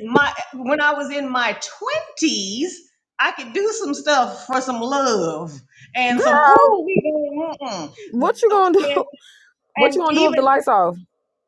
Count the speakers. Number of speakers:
2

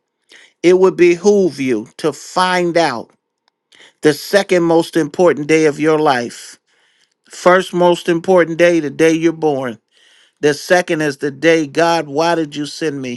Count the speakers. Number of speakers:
1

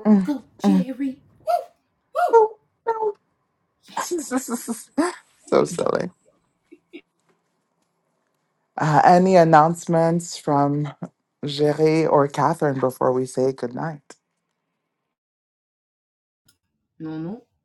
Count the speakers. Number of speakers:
2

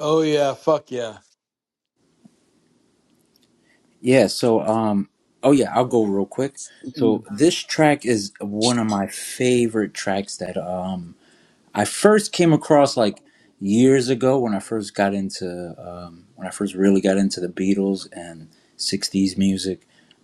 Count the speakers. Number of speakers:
2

